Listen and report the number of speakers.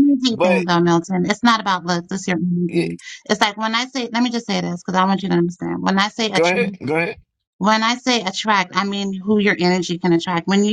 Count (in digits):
2